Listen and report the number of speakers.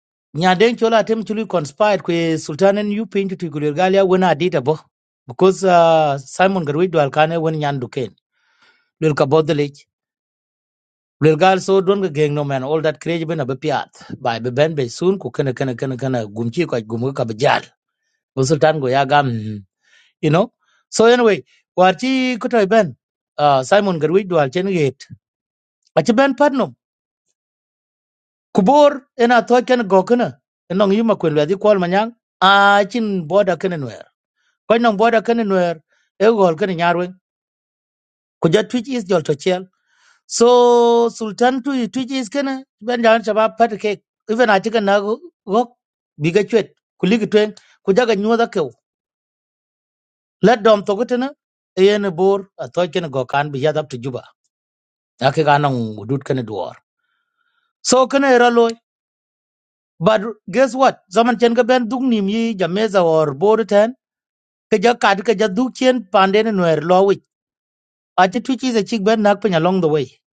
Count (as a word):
one